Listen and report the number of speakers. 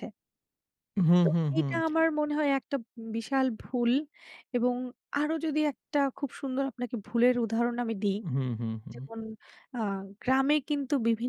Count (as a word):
two